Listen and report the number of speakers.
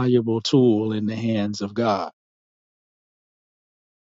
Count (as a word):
one